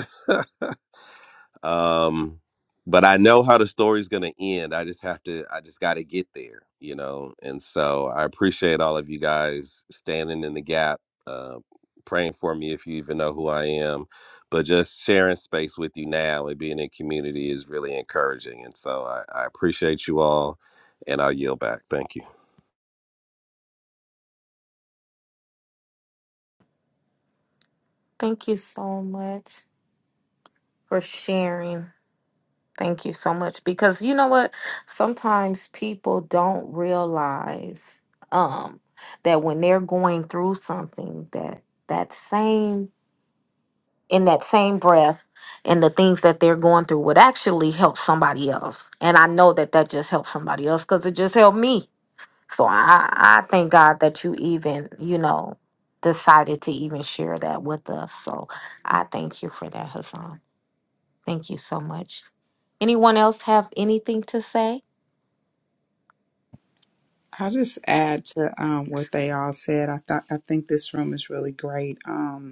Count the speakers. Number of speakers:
3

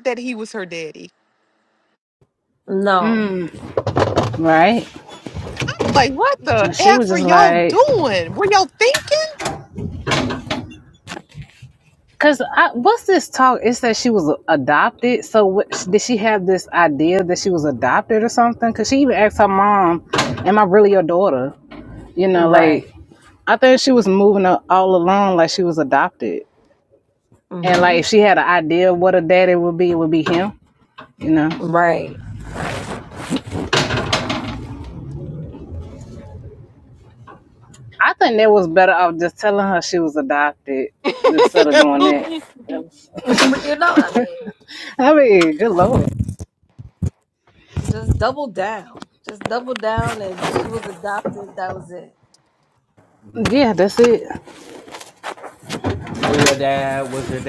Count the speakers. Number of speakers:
4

